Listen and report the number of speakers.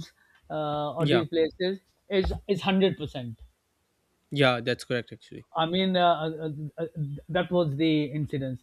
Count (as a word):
two